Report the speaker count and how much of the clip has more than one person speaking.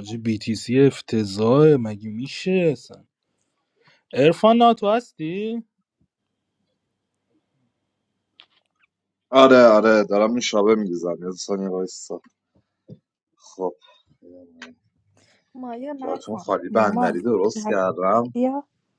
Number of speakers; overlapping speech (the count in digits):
3, about 7%